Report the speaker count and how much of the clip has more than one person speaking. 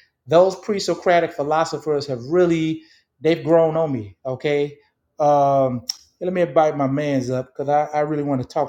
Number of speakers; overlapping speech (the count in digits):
1, no overlap